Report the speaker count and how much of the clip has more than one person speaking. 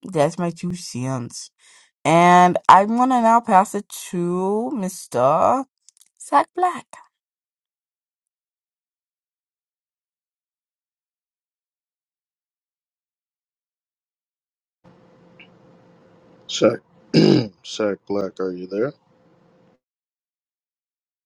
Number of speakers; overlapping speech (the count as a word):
two, no overlap